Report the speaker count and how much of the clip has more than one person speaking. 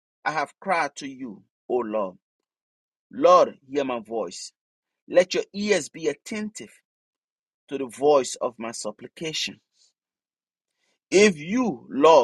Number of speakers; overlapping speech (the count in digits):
1, no overlap